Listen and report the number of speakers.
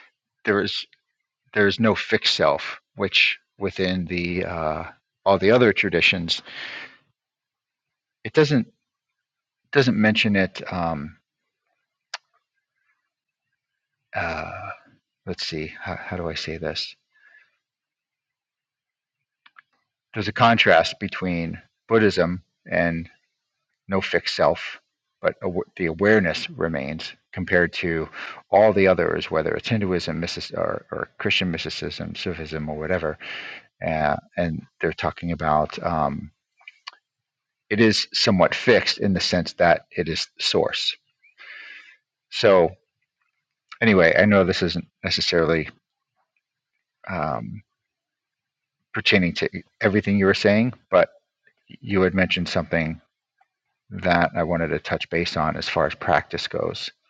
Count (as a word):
one